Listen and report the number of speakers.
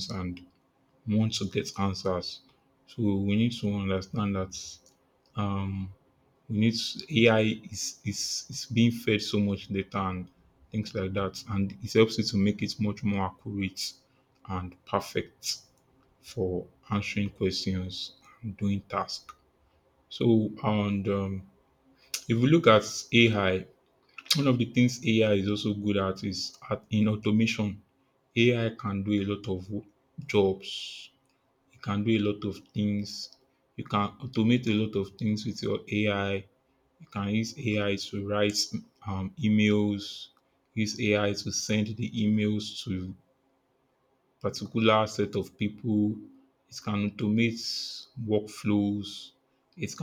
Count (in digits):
1